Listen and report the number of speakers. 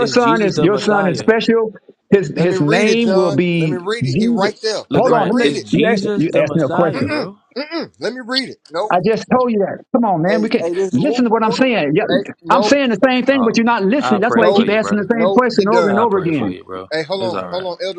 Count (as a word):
three